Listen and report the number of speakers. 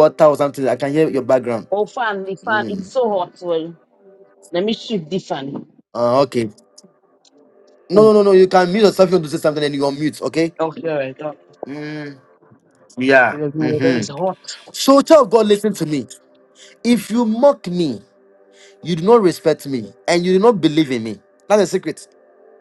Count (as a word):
two